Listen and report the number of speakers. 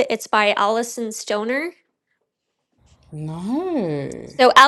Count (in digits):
2